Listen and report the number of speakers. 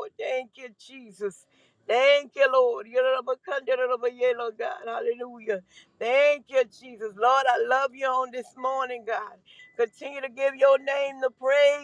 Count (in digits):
1